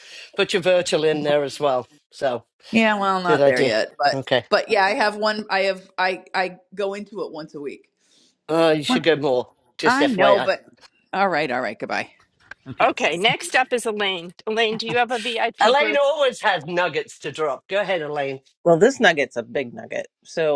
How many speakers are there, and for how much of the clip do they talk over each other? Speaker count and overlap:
four, about 8%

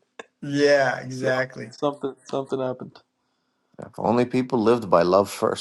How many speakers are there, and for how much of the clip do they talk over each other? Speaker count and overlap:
three, about 4%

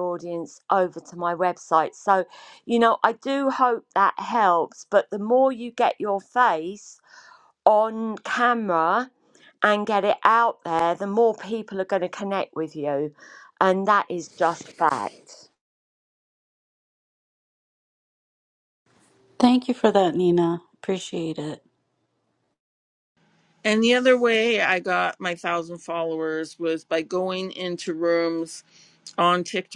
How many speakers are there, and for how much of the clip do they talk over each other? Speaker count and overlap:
three, no overlap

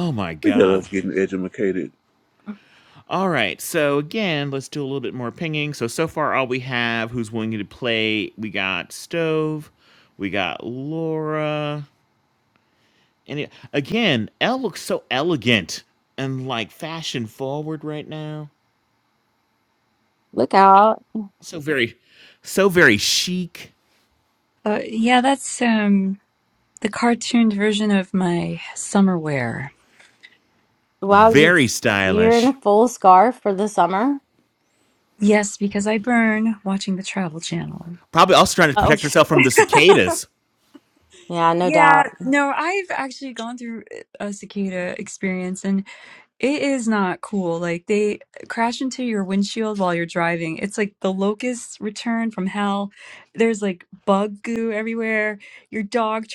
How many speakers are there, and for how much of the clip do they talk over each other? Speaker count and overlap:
four, about 3%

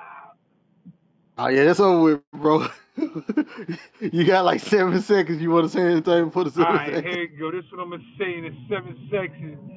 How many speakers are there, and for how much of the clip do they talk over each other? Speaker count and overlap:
two, about 6%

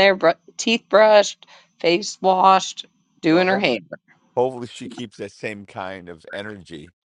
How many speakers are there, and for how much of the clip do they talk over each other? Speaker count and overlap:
two, about 4%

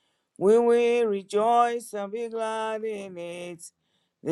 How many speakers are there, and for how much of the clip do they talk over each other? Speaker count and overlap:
one, no overlap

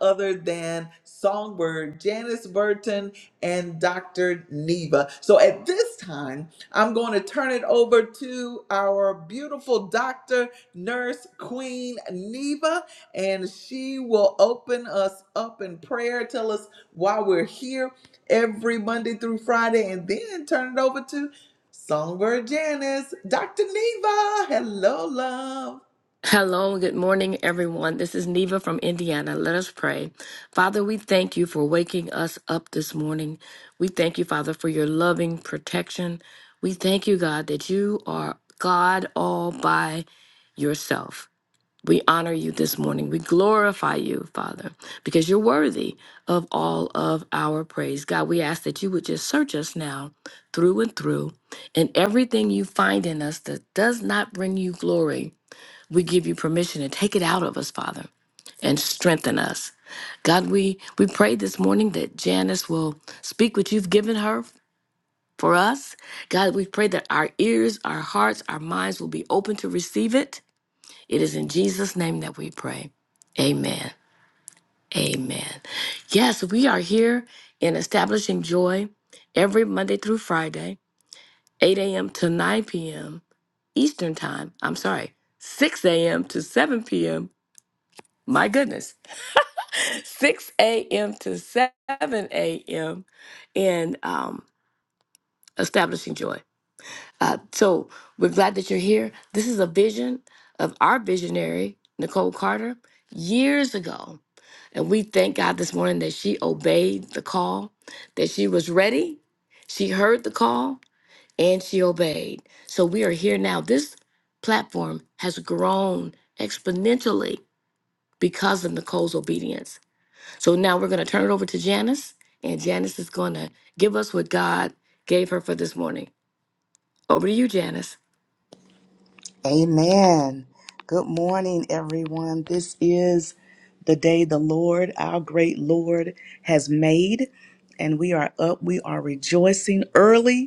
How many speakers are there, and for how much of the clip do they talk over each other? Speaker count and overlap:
three, no overlap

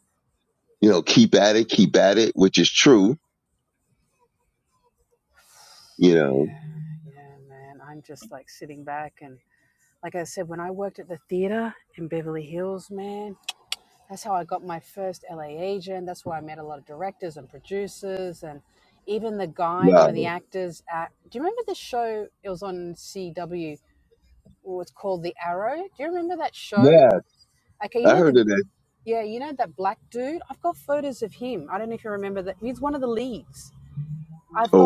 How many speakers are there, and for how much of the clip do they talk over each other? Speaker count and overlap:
two, about 3%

